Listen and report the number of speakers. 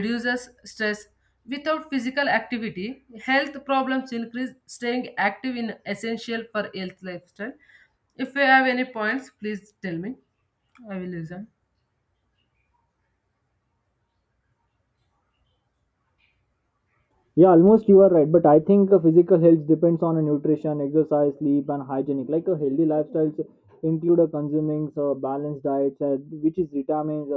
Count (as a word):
two